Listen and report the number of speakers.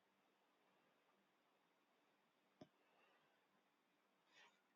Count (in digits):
0